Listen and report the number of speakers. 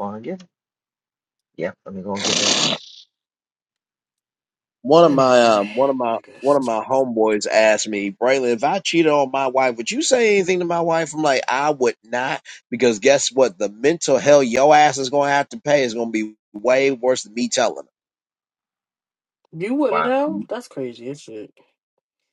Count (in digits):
3